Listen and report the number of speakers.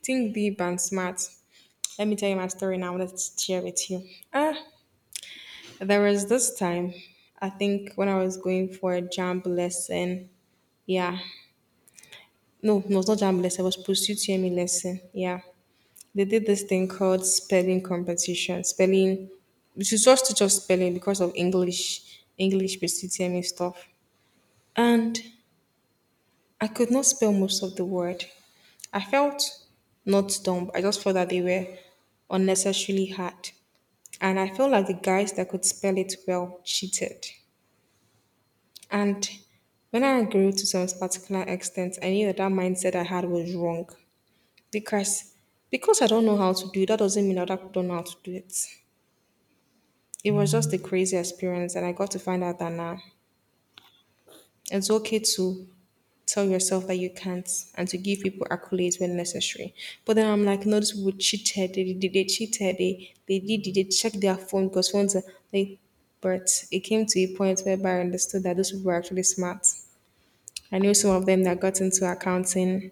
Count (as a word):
one